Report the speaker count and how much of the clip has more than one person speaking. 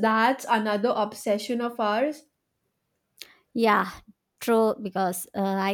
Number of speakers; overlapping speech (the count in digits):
2, no overlap